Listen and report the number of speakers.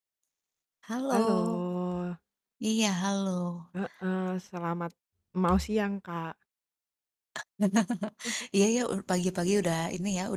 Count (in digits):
2